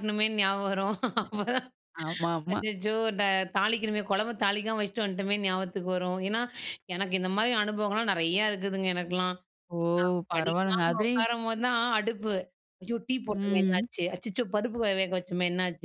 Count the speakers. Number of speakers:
2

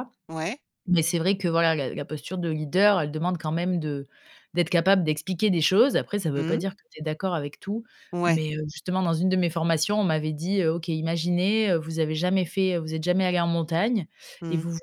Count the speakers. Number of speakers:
2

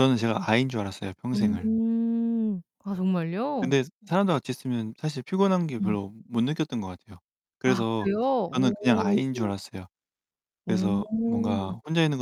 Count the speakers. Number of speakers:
2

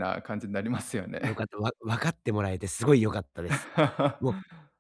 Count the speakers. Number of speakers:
2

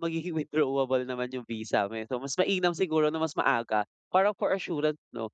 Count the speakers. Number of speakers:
1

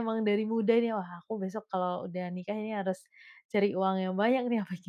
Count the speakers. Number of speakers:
1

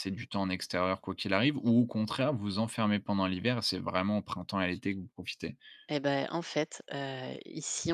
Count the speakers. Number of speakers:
2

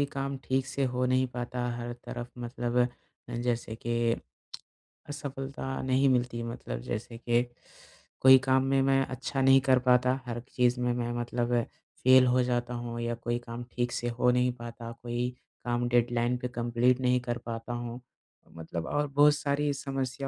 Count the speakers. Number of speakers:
1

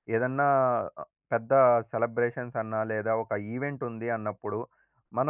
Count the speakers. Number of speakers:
1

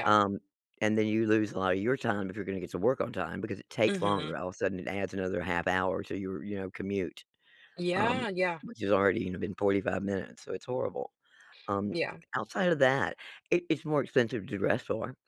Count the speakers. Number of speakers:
2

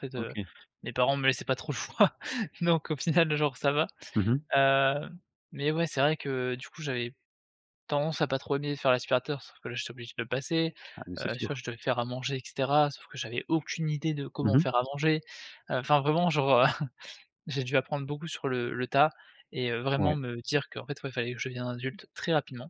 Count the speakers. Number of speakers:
2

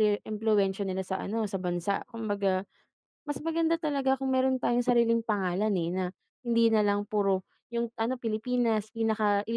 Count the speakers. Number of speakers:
1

